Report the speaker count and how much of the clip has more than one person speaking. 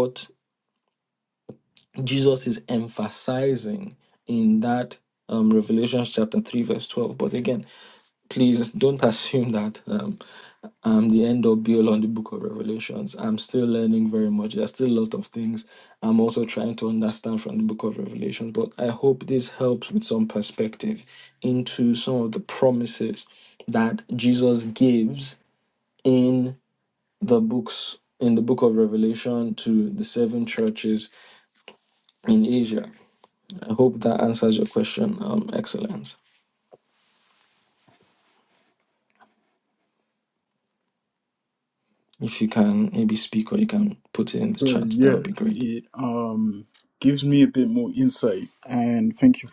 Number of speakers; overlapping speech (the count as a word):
two, about 2%